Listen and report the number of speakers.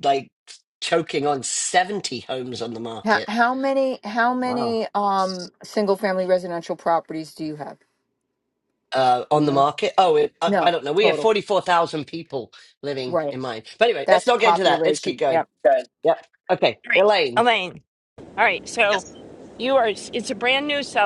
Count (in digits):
3